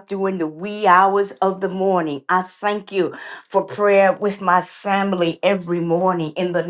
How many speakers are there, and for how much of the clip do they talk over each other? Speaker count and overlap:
one, no overlap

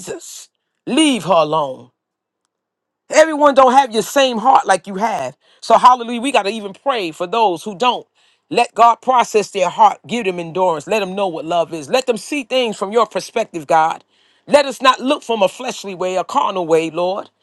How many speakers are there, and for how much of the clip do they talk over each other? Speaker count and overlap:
one, no overlap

